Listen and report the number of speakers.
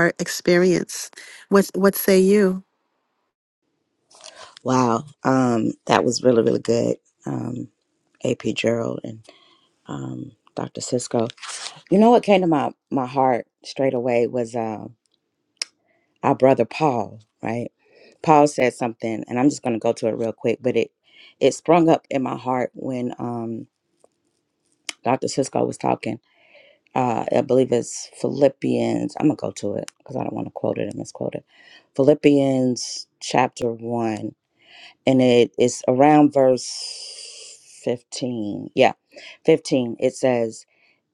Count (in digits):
2